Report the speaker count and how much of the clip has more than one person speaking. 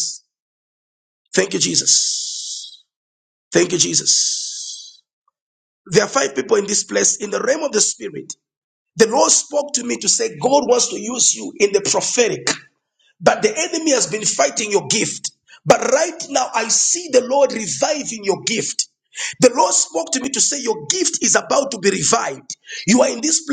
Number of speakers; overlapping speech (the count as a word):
one, no overlap